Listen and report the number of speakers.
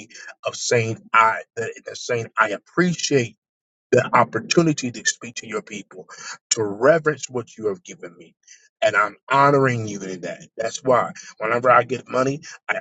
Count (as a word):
one